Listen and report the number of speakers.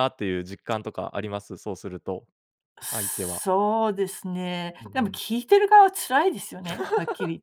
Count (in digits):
2